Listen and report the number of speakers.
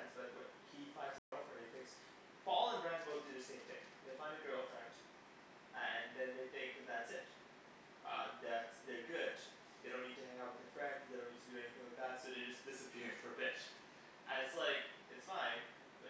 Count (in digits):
1